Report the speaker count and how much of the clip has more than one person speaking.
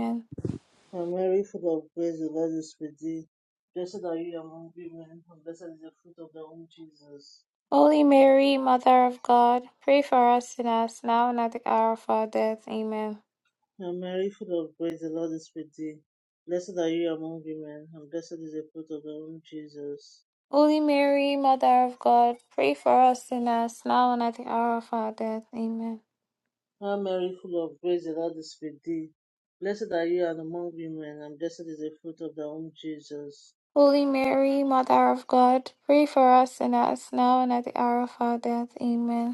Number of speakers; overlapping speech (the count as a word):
two, no overlap